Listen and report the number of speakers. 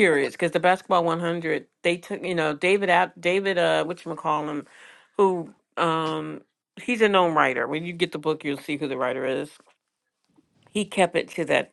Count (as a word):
one